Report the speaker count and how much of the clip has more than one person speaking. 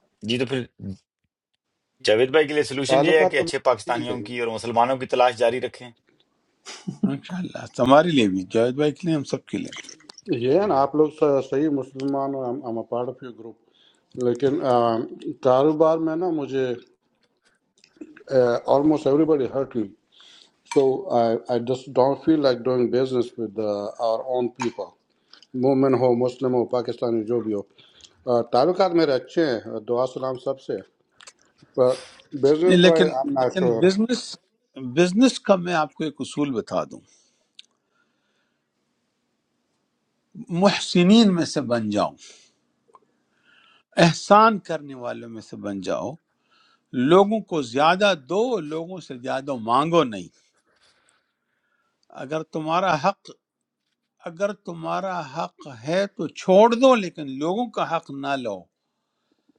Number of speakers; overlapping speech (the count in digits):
3, about 4%